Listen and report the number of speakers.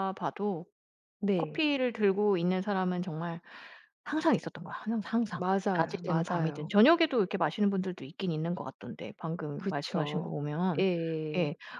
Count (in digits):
2